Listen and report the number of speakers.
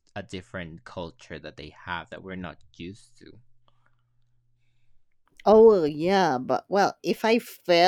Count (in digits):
2